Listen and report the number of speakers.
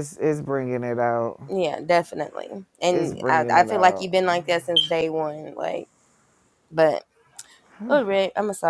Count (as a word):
two